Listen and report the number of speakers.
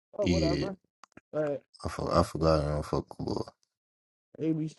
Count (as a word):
two